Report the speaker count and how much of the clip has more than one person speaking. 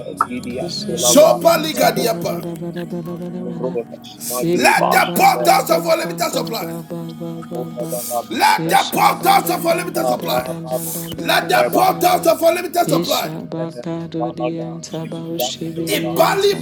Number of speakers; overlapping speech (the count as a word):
three, about 71%